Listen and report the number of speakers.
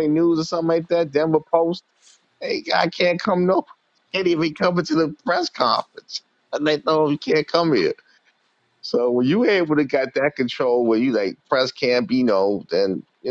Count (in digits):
1